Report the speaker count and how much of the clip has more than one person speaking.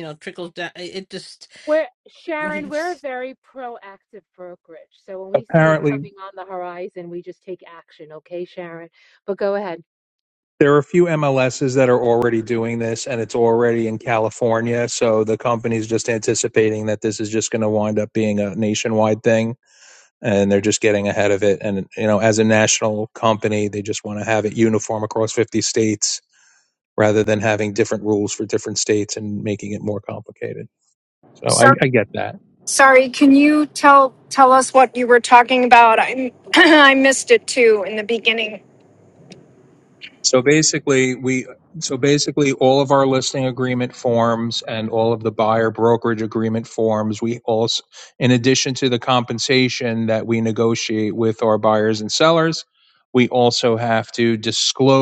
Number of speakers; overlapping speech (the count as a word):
four, about 2%